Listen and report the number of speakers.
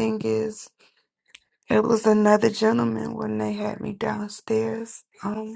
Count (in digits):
1